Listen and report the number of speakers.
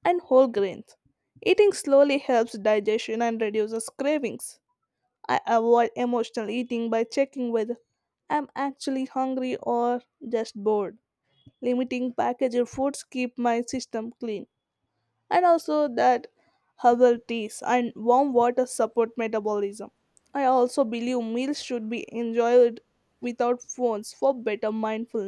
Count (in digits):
1